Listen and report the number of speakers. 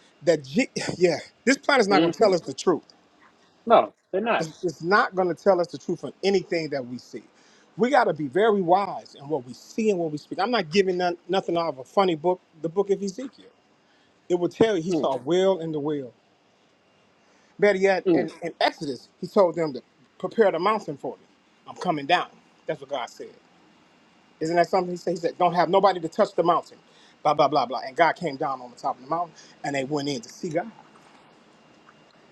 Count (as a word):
two